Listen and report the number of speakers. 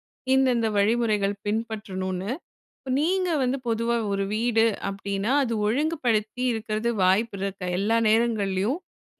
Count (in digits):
1